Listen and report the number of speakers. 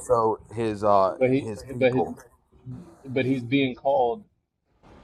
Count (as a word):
two